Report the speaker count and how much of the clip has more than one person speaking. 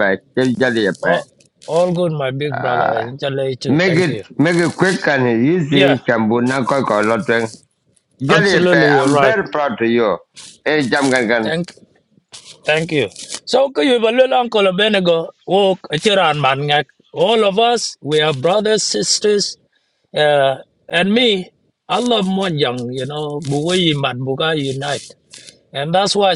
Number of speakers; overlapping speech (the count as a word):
two, about 11%